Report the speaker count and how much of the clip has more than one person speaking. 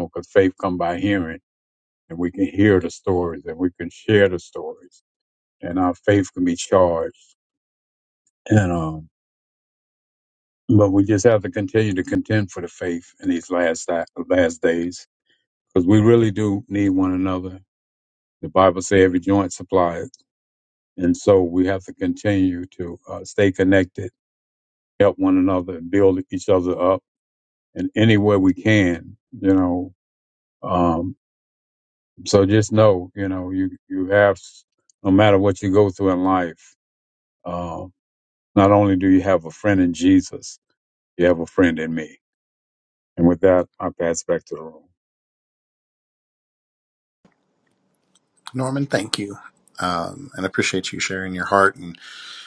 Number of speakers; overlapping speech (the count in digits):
2, no overlap